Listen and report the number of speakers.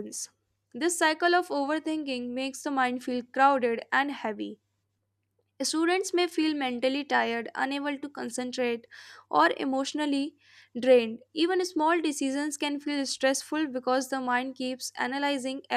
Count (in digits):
1